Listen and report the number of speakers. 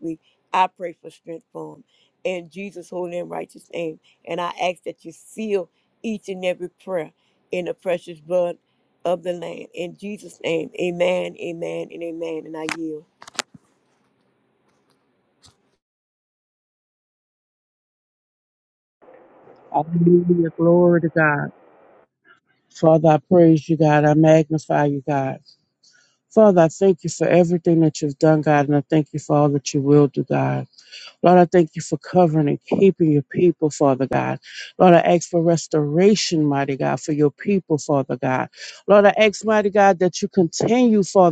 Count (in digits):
2